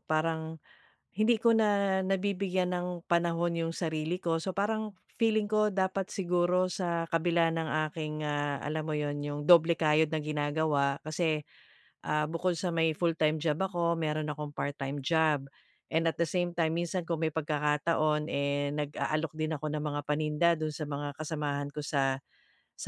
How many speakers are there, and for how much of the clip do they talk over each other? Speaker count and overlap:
one, no overlap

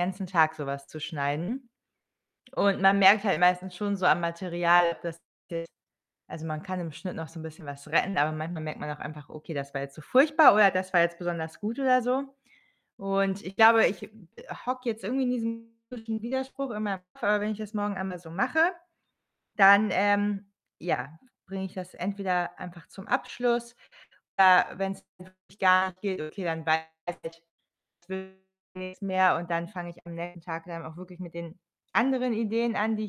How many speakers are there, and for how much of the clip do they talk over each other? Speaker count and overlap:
one, no overlap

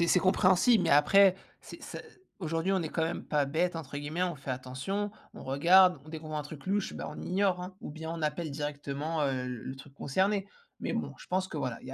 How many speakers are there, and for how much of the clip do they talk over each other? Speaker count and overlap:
one, no overlap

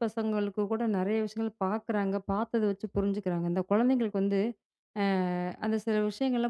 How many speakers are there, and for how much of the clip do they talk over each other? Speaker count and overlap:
one, no overlap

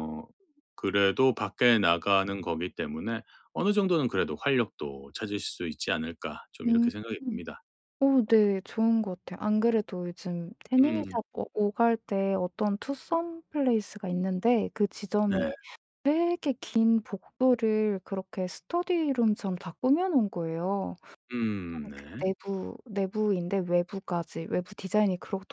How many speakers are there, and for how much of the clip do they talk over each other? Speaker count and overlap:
two, about 4%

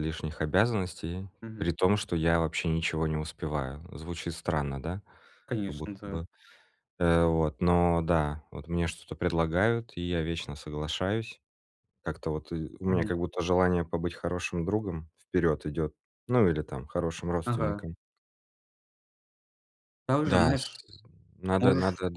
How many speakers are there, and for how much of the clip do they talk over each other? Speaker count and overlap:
two, about 9%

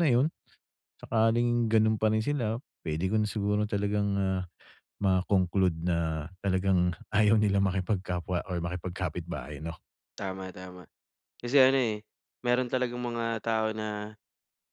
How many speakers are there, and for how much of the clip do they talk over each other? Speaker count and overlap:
two, no overlap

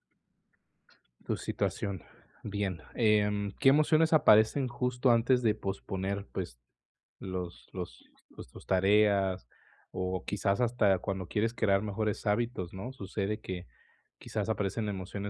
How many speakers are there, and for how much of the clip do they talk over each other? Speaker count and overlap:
one, no overlap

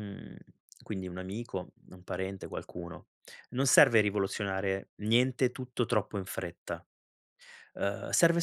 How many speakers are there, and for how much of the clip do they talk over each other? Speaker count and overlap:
one, no overlap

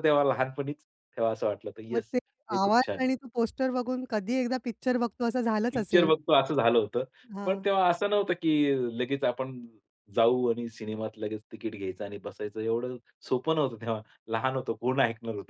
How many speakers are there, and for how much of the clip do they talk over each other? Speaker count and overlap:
two, about 8%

